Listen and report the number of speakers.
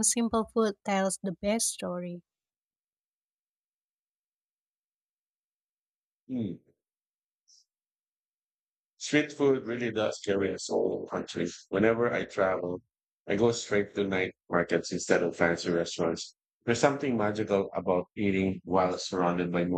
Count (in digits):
2